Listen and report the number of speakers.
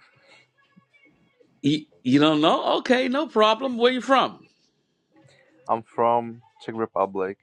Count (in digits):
2